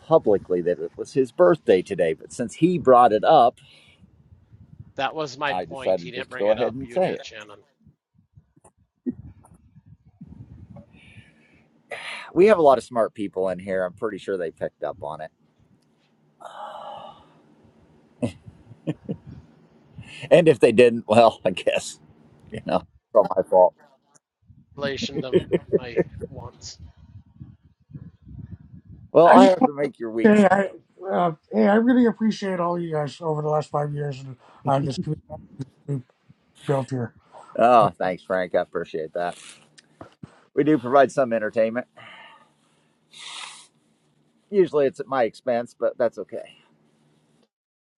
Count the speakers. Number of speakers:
three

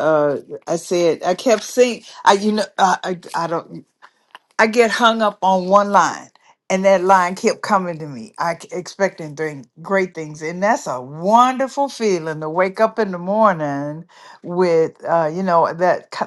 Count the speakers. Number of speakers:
one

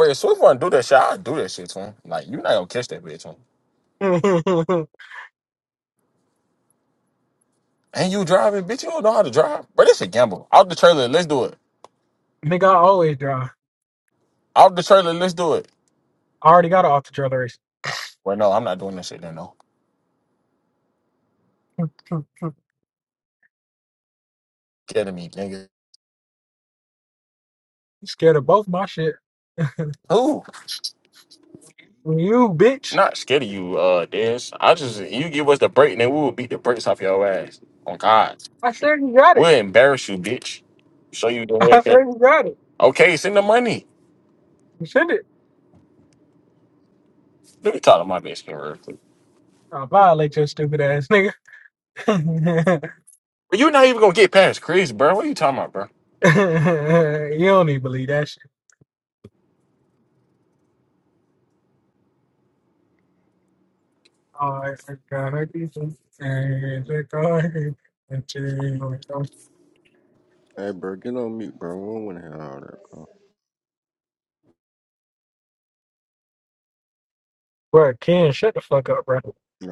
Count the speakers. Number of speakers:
three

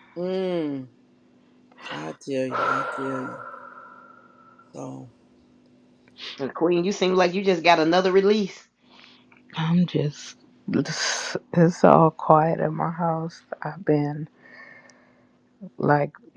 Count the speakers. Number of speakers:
three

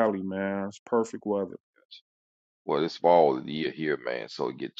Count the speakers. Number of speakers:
two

